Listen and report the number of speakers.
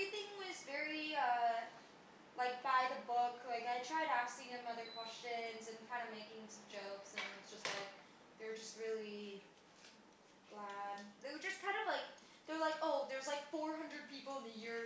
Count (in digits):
1